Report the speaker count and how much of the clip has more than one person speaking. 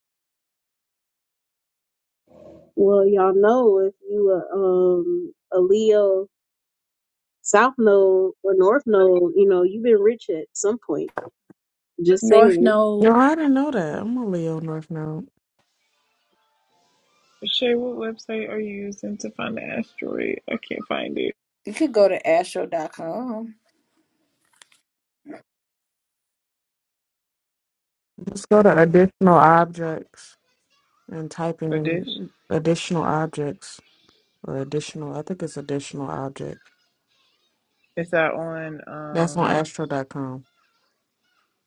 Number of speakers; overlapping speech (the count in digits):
4, about 4%